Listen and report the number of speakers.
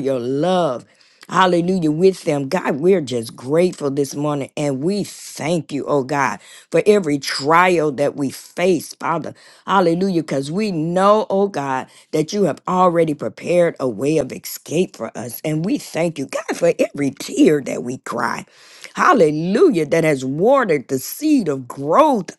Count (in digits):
1